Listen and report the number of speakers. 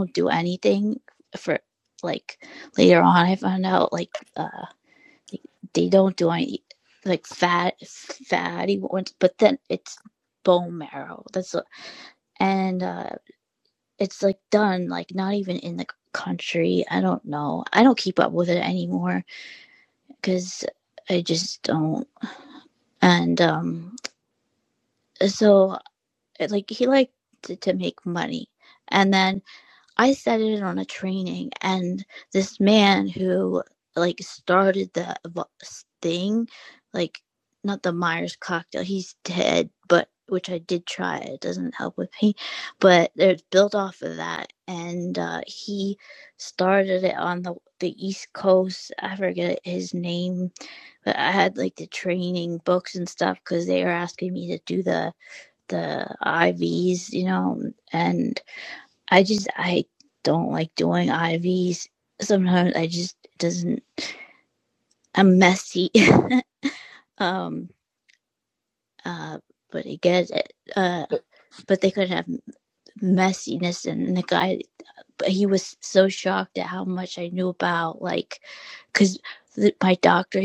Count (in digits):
1